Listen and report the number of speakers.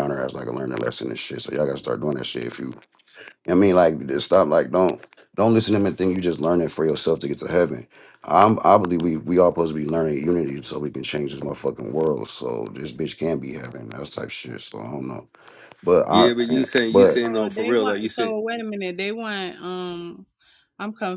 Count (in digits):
3